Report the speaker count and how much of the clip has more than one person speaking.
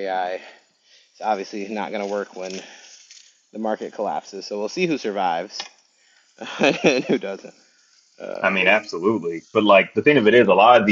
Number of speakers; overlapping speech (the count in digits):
2, about 2%